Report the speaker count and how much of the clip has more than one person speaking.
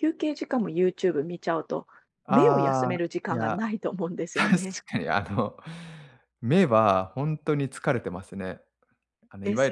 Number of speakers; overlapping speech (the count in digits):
2, about 21%